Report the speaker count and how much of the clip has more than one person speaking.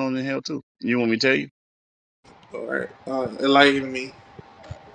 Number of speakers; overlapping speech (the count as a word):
two, no overlap